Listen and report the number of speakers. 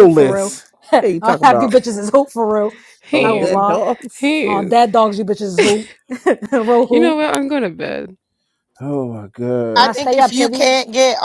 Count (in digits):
4